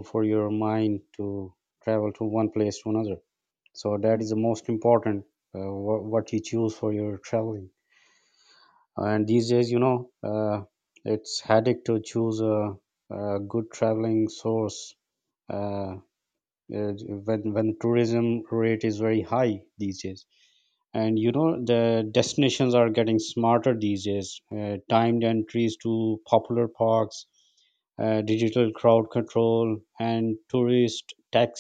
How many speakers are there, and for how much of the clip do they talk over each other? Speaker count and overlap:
1, no overlap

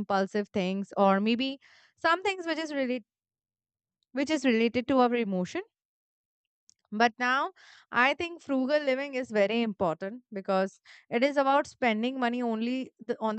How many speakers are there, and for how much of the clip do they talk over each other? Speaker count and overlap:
1, no overlap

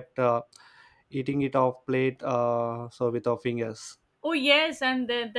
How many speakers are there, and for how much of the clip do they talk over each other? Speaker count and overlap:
2, no overlap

